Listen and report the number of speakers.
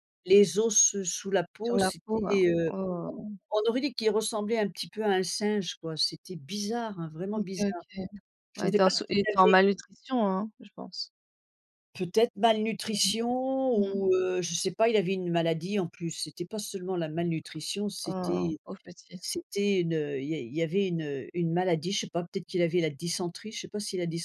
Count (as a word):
two